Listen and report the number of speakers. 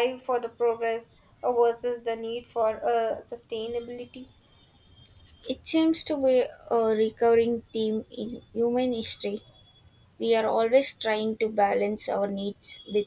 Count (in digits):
2